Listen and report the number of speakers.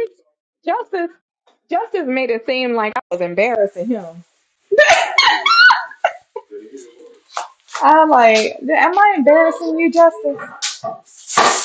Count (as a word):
one